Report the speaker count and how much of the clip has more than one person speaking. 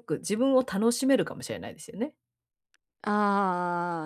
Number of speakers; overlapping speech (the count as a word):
two, no overlap